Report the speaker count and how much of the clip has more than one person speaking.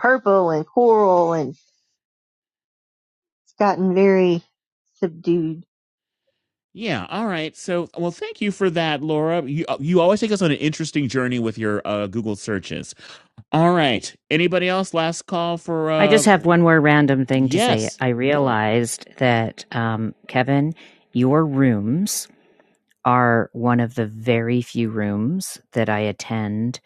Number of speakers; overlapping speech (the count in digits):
3, about 3%